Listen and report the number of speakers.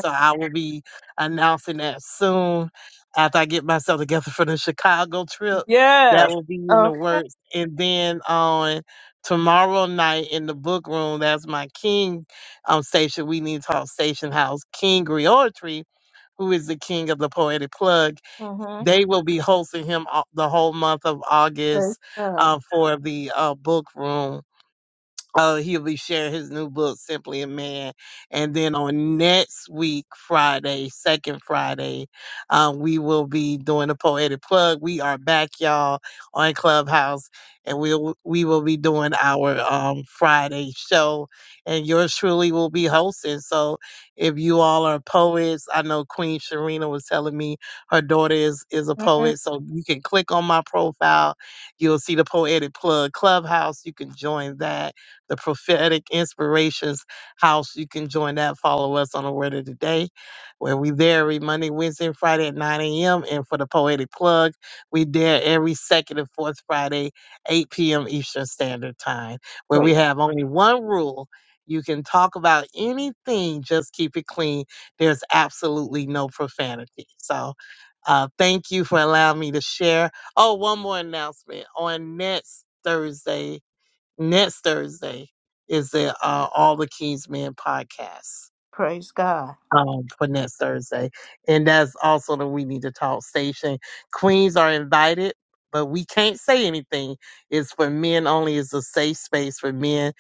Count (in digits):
2